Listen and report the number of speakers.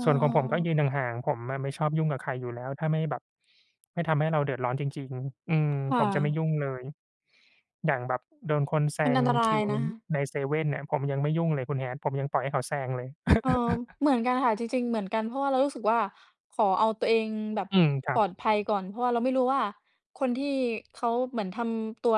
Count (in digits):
2